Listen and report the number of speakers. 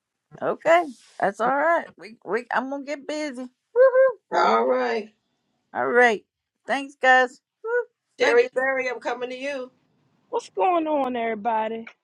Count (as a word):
three